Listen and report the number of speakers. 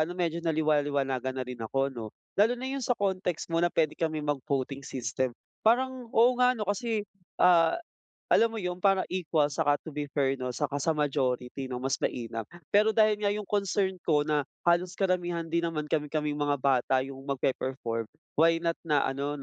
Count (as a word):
one